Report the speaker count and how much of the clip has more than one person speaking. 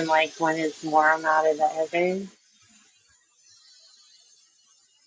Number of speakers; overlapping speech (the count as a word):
one, no overlap